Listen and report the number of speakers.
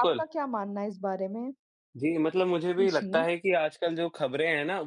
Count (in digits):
2